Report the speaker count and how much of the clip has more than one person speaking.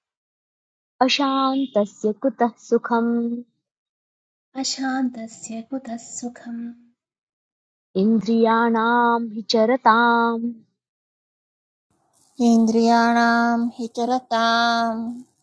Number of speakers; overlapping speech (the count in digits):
3, no overlap